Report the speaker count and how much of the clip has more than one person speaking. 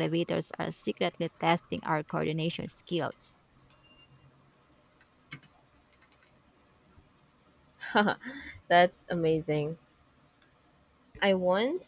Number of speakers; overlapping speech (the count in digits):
2, no overlap